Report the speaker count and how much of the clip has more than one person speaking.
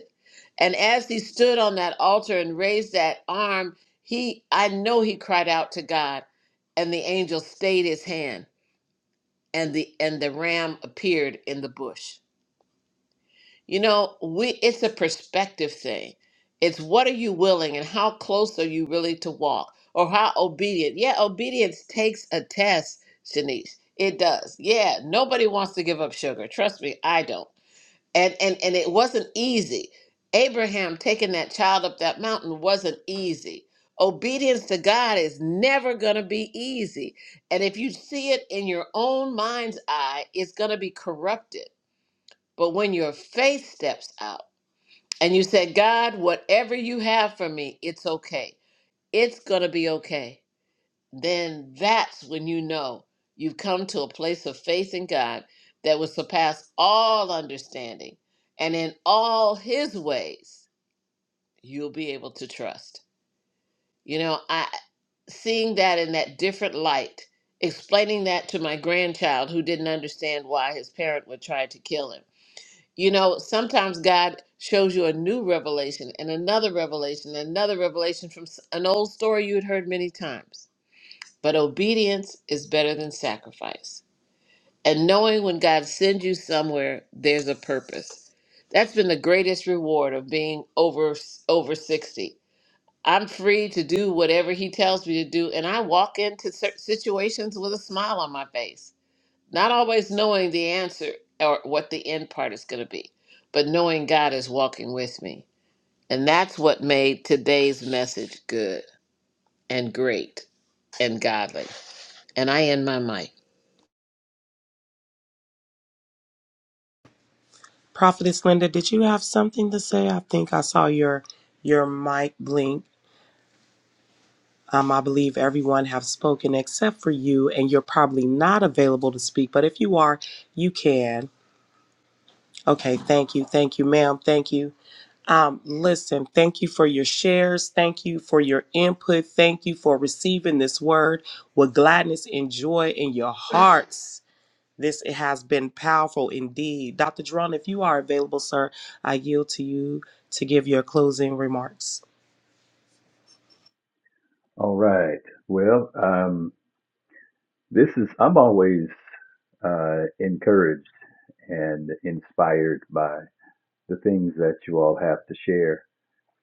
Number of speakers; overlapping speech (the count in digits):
3, no overlap